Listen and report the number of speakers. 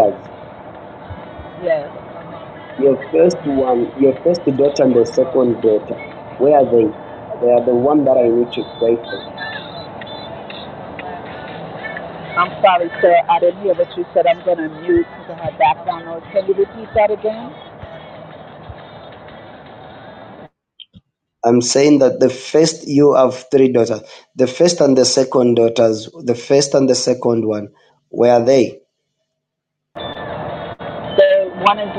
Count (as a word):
two